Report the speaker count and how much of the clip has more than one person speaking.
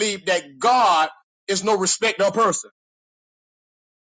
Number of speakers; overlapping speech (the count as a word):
one, no overlap